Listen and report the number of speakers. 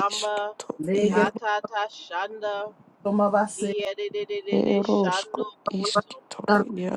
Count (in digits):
3